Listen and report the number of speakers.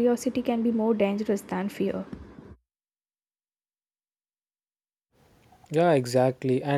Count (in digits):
2